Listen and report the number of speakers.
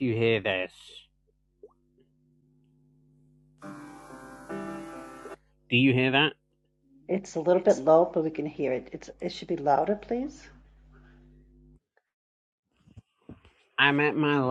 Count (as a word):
two